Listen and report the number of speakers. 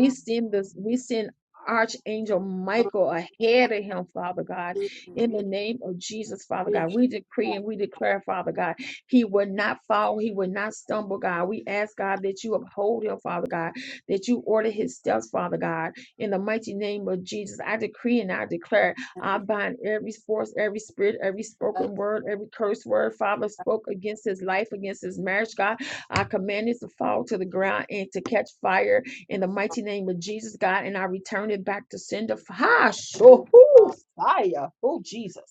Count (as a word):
one